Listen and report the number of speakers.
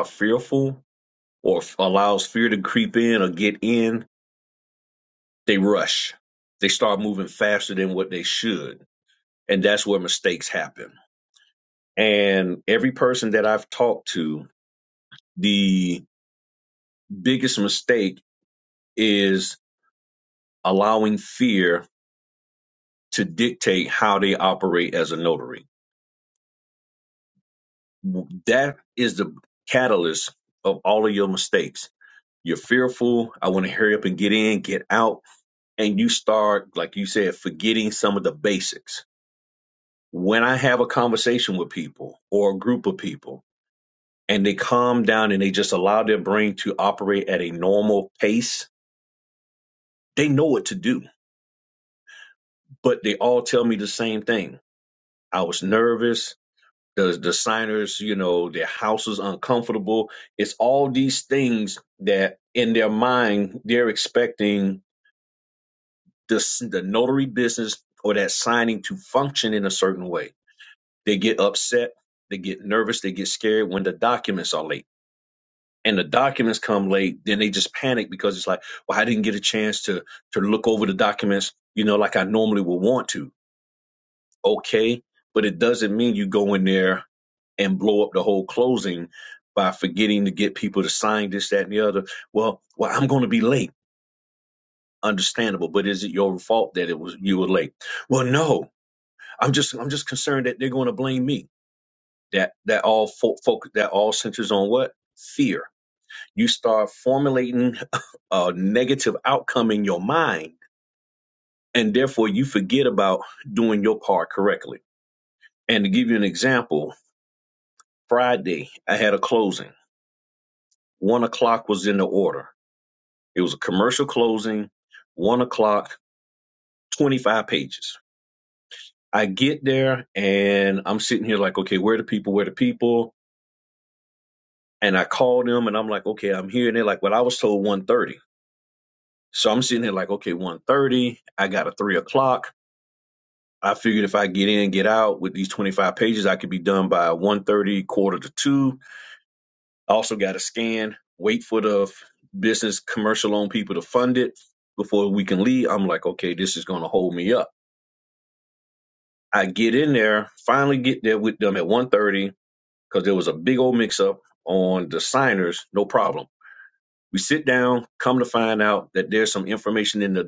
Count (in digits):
1